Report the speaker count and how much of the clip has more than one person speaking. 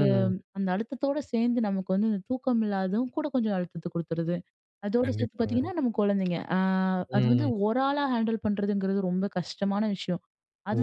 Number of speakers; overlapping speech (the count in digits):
2, about 11%